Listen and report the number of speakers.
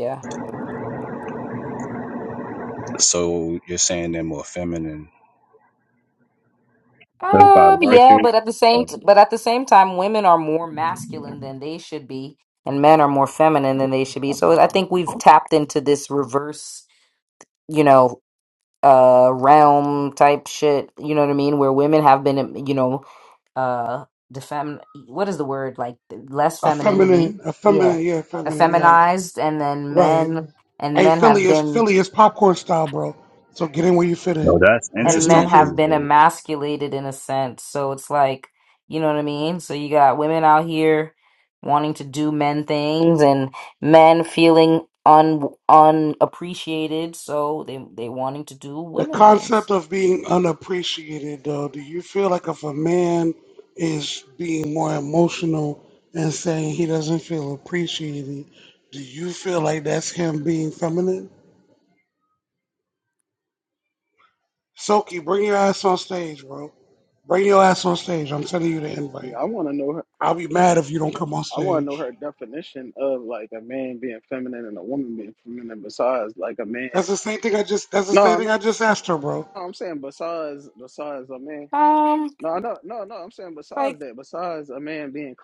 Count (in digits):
4